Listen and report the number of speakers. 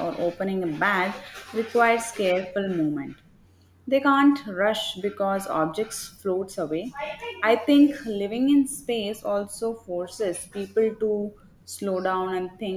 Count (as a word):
one